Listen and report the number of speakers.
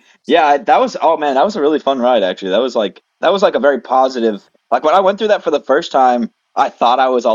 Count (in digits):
1